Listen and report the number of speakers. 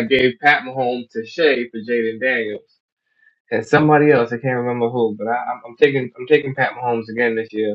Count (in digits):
1